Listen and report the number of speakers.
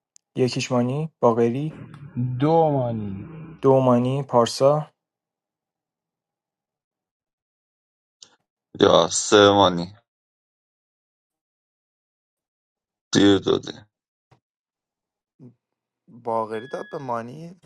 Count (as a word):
four